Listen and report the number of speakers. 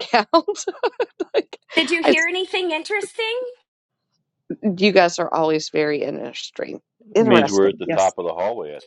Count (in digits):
3